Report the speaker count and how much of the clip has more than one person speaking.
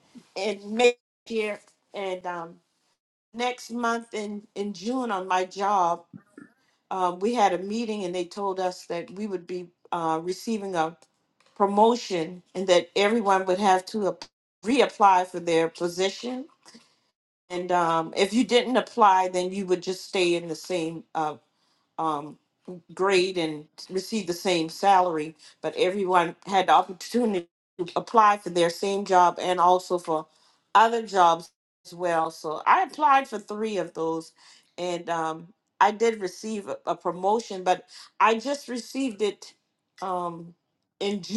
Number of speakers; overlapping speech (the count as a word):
one, no overlap